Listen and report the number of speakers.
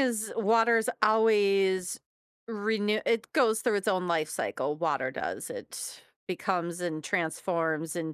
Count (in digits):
1